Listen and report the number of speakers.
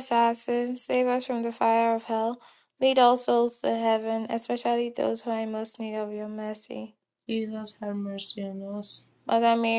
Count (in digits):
2